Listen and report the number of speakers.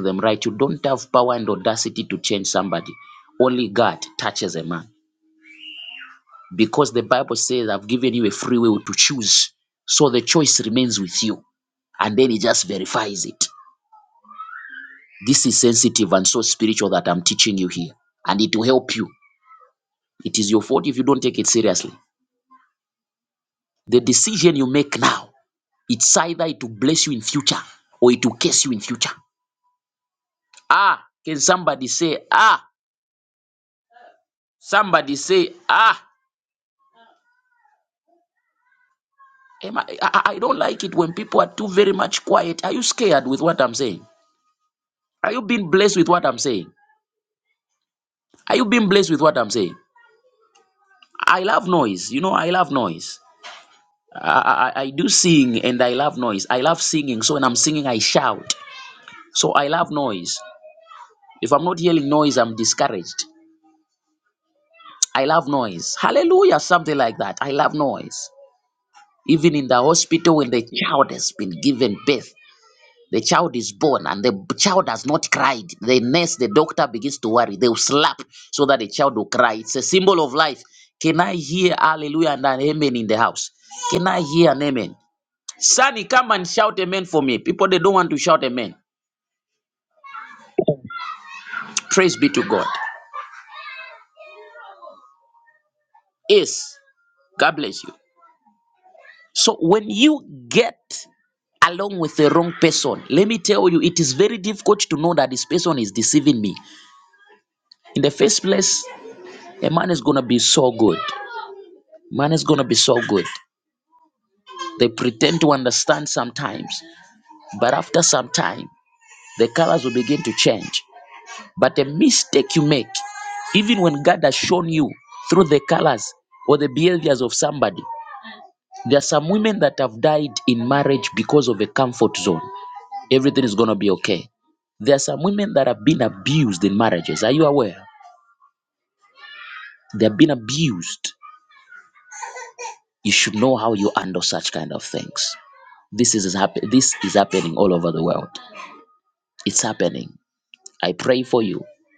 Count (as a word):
one